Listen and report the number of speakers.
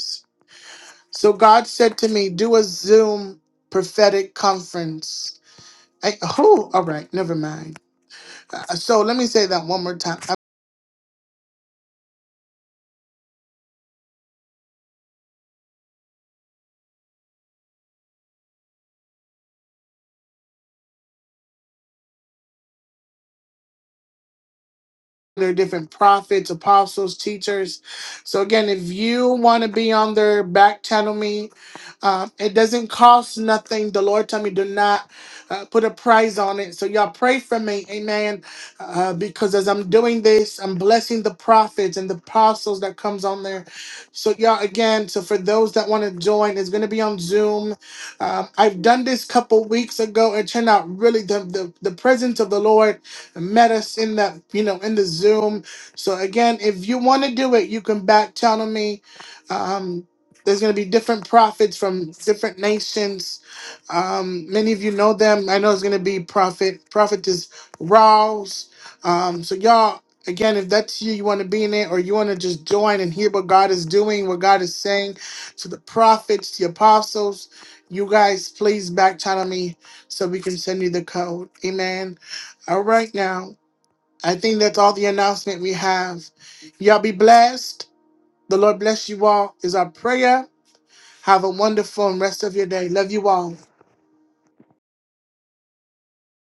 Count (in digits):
1